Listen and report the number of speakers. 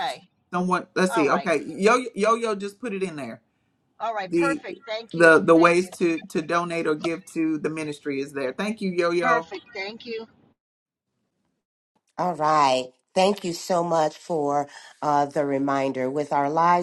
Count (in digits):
3